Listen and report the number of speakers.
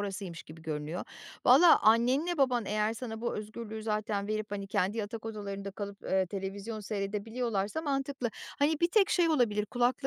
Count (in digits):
1